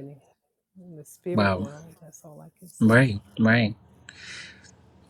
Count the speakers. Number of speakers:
two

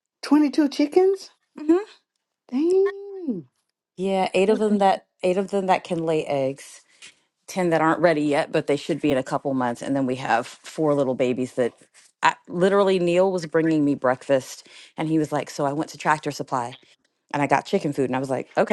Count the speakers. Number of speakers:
two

